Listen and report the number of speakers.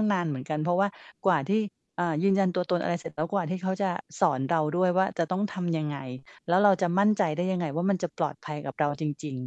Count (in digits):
1